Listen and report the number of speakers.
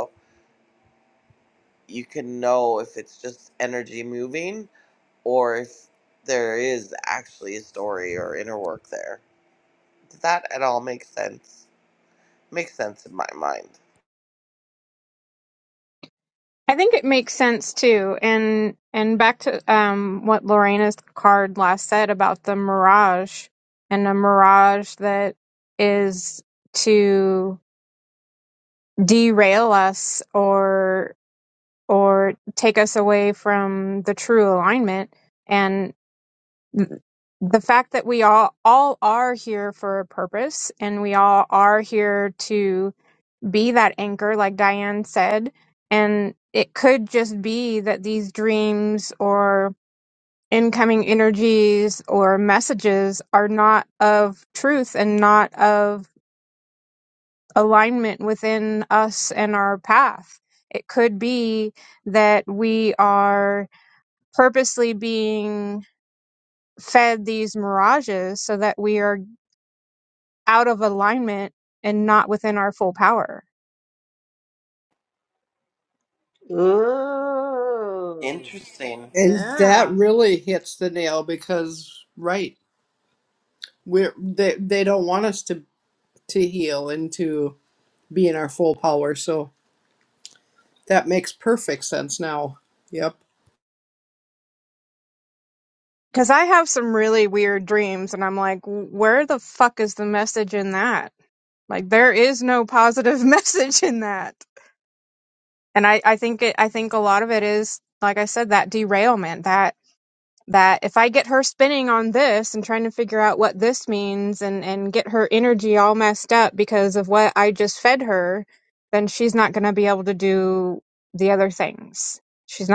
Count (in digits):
4